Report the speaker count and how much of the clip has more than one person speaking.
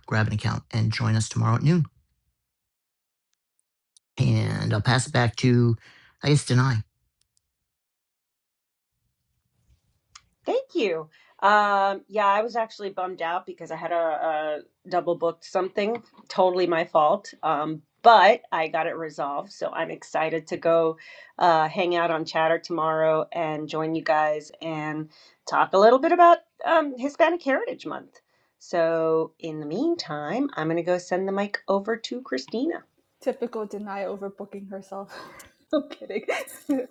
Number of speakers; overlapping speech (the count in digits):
3, no overlap